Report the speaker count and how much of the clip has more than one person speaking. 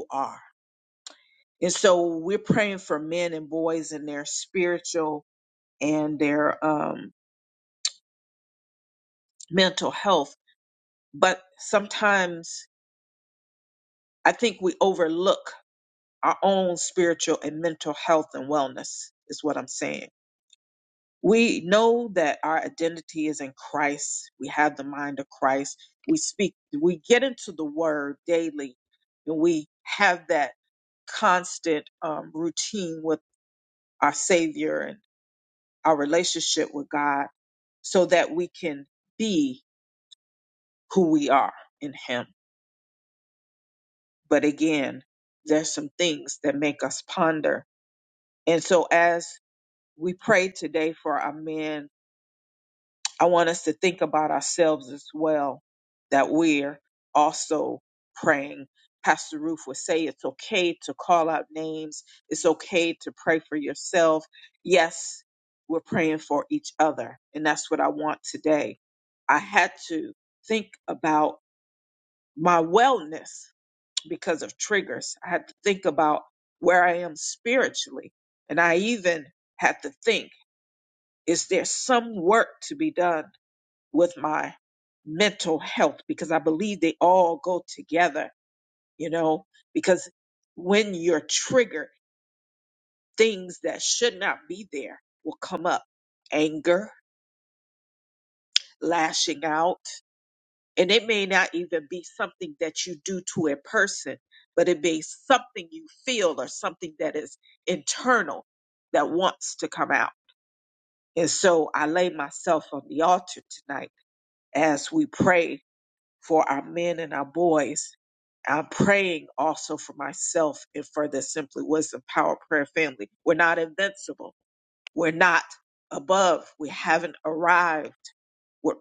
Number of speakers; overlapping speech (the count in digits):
1, no overlap